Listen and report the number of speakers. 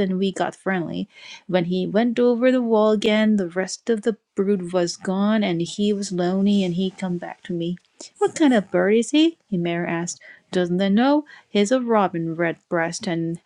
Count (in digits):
1